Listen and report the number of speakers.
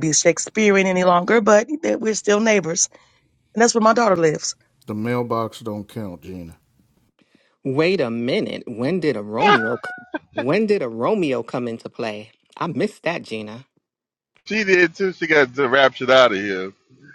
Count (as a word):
four